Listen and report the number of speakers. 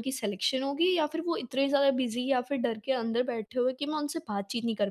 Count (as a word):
one